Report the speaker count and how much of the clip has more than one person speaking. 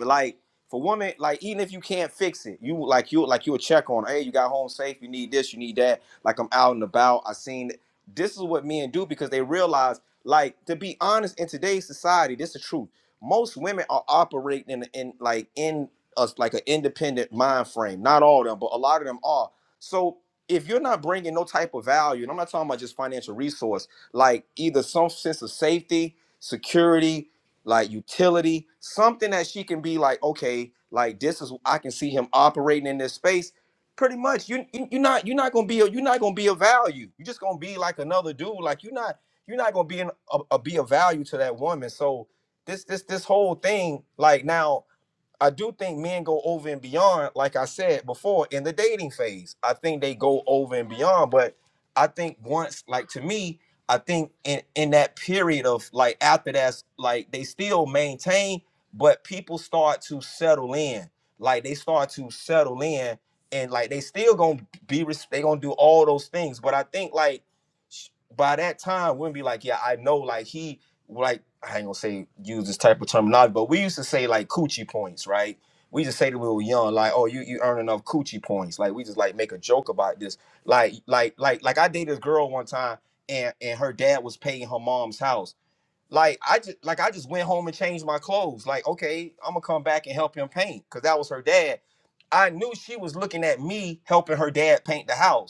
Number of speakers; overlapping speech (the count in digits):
1, no overlap